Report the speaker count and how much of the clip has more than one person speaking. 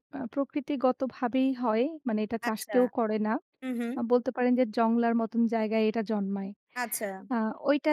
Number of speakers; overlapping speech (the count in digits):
2, about 5%